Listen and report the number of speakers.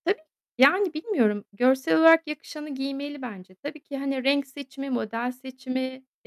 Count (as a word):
one